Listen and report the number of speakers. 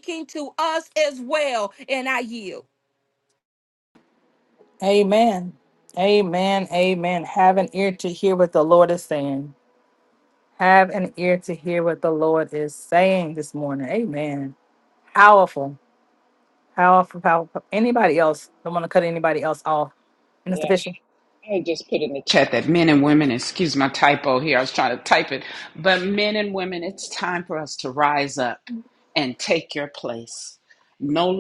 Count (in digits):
3